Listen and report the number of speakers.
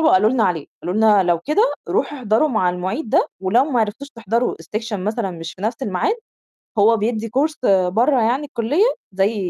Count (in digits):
1